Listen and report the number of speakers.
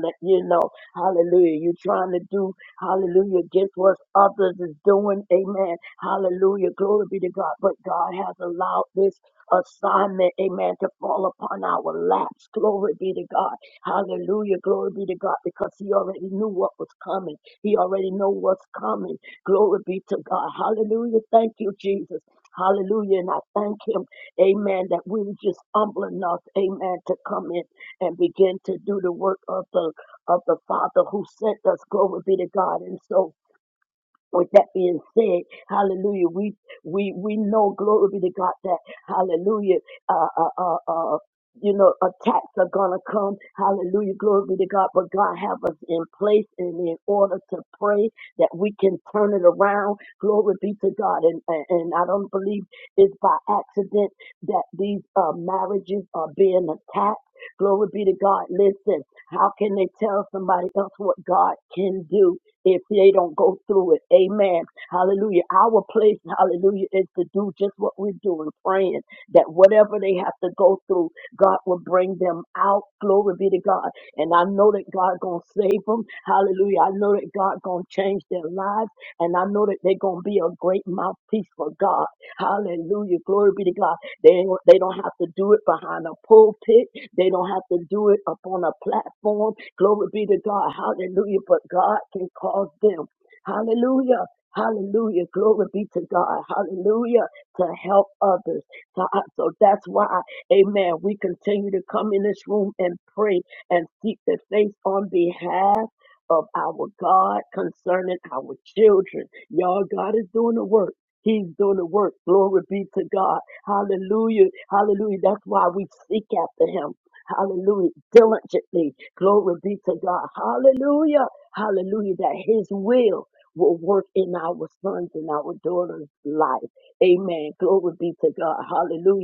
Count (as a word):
one